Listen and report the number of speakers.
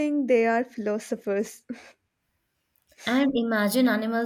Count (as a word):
two